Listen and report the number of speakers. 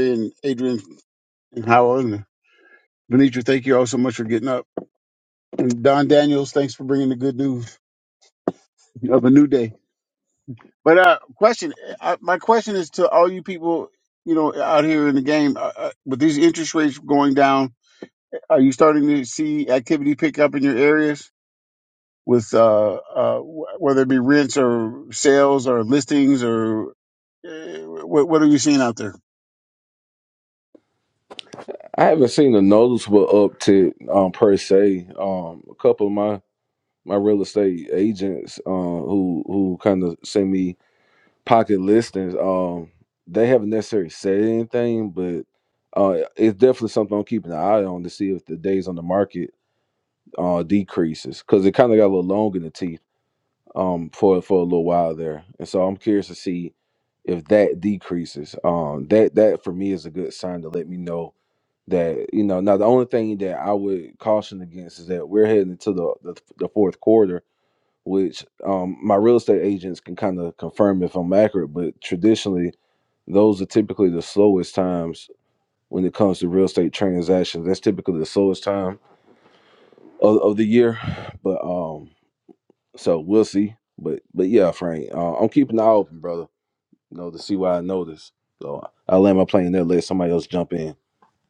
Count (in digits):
2